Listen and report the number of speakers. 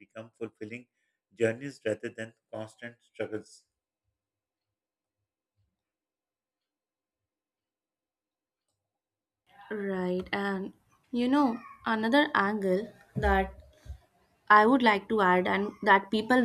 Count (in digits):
2